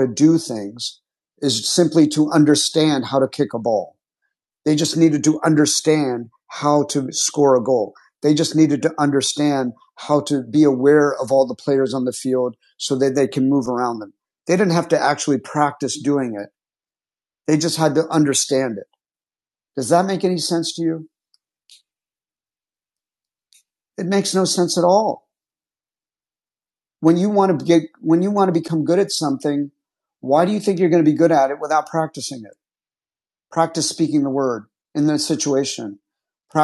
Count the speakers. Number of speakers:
1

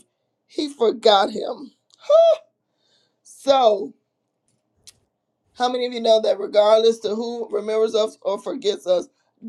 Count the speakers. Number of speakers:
1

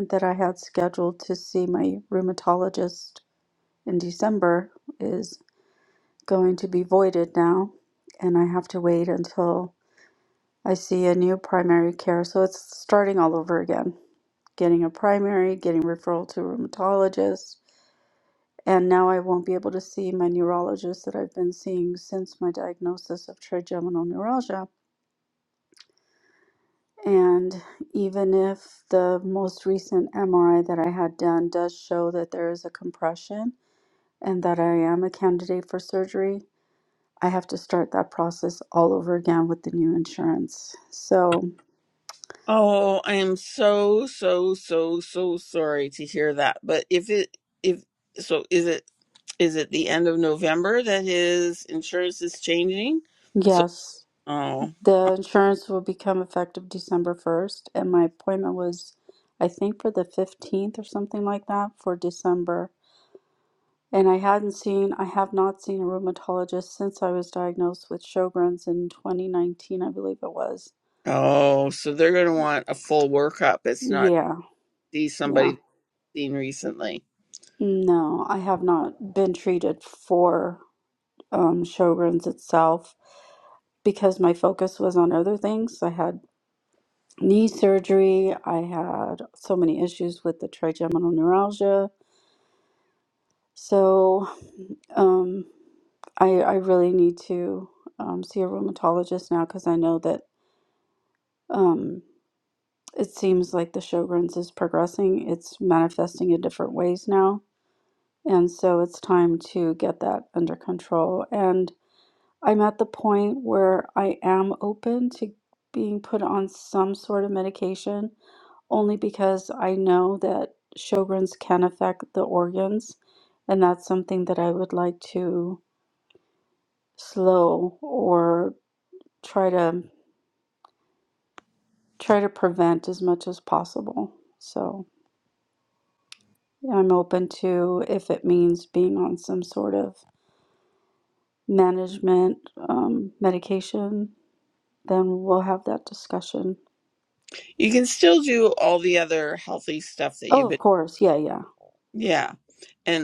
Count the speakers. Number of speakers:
2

